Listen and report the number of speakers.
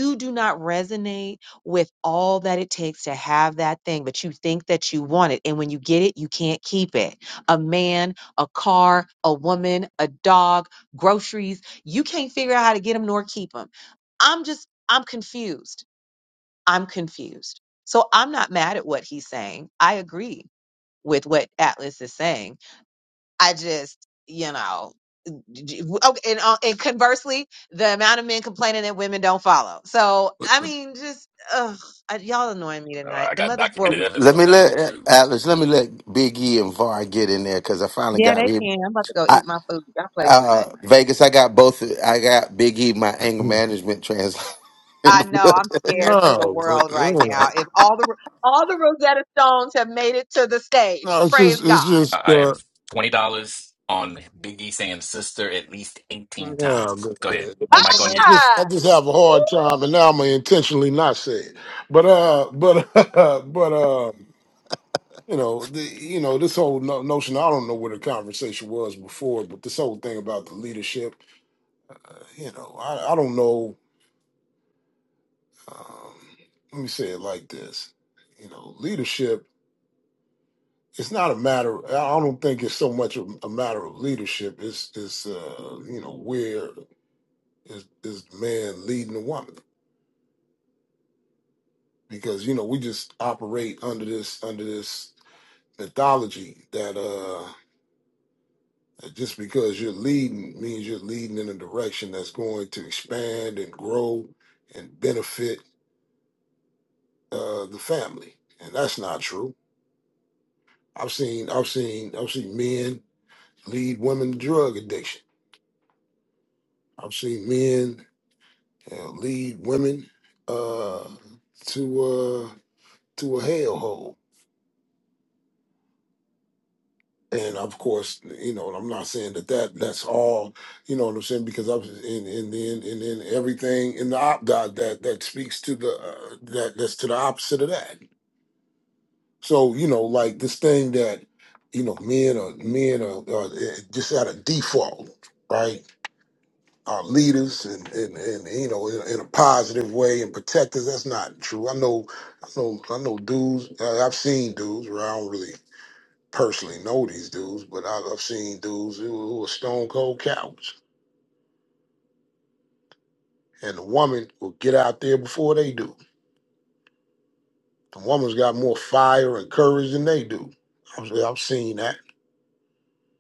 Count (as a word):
four